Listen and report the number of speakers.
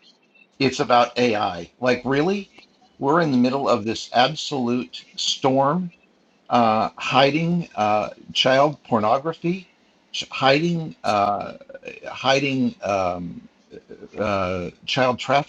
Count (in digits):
1